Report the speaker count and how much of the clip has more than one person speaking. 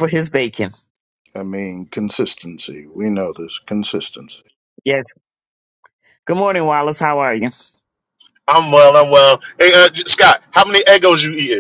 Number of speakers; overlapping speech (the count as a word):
three, no overlap